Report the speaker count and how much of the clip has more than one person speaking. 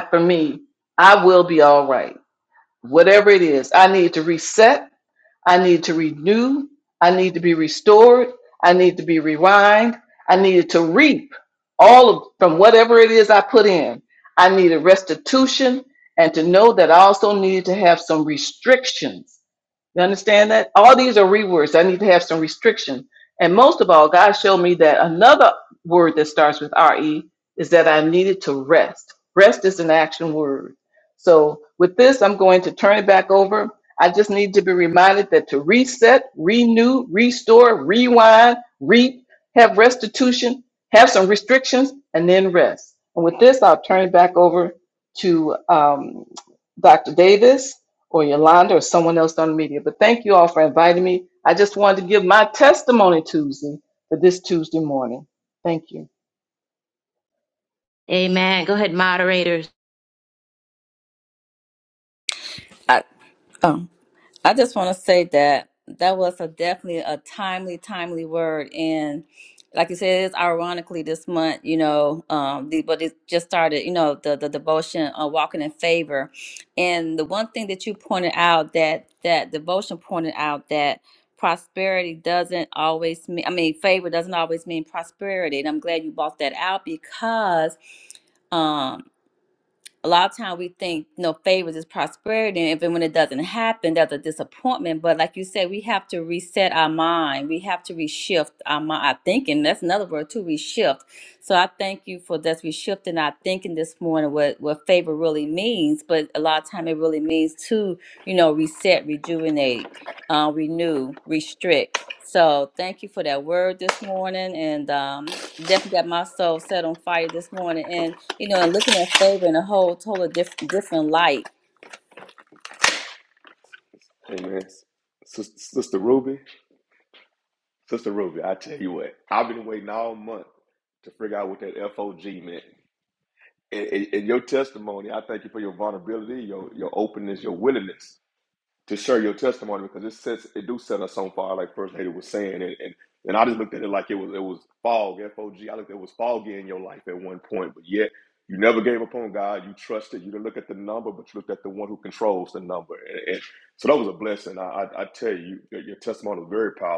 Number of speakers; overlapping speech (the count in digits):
4, no overlap